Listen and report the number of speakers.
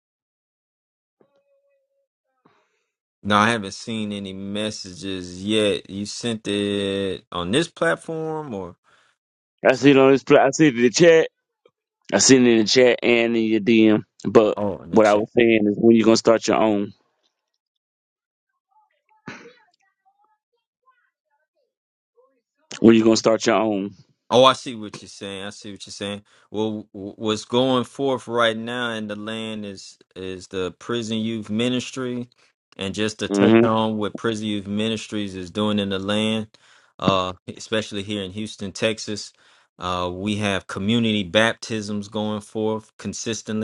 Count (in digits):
2